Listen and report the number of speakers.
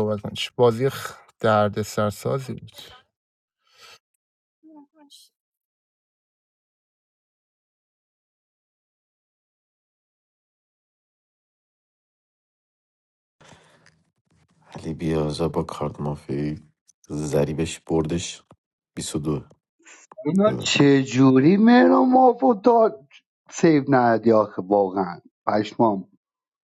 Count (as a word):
three